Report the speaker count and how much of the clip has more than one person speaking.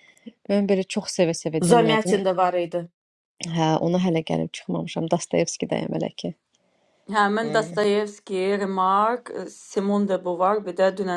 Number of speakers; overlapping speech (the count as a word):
three, about 8%